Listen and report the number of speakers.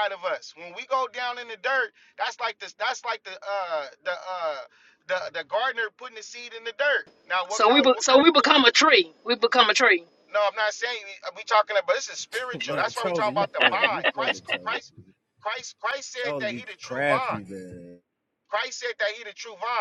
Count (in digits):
3